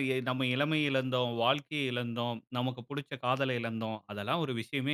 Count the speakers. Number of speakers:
1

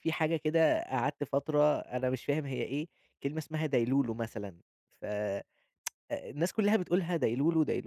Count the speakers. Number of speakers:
1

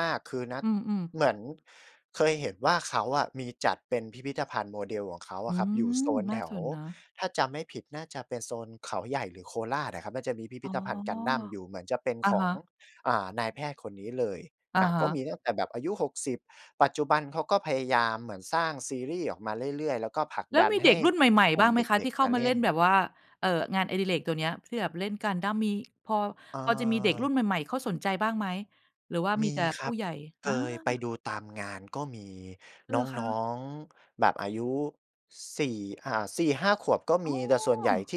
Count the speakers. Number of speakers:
2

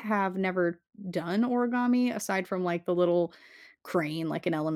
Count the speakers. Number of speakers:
1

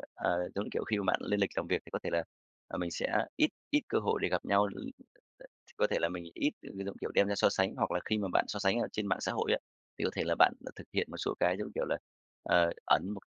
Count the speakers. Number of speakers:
1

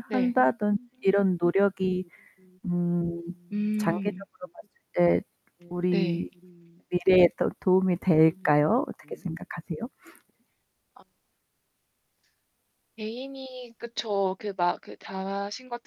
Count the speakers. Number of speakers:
2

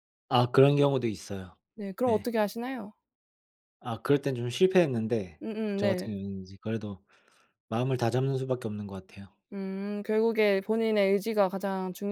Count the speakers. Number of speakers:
2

